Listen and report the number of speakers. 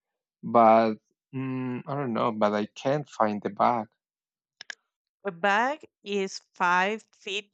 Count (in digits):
2